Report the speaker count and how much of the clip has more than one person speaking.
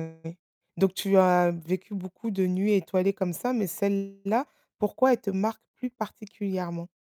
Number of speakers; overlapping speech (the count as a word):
one, no overlap